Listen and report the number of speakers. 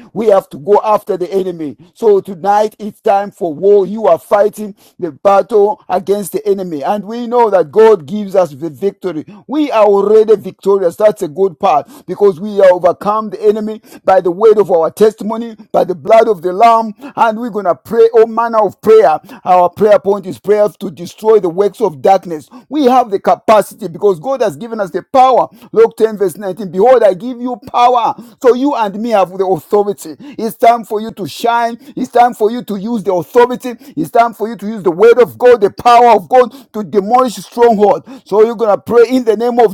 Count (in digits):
1